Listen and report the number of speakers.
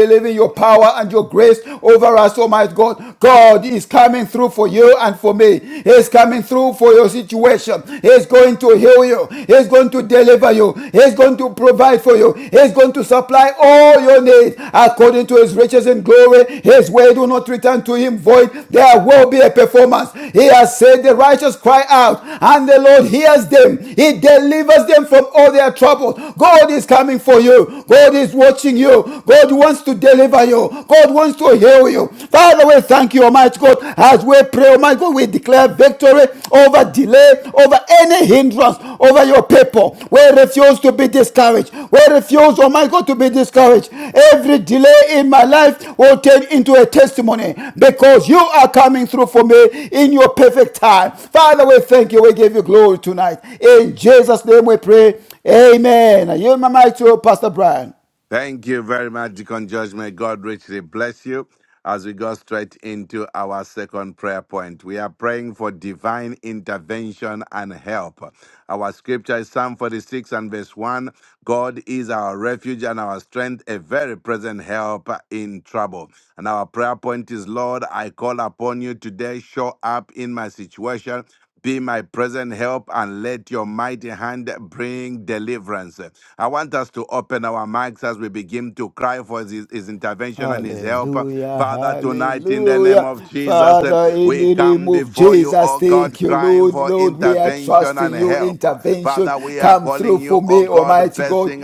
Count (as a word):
two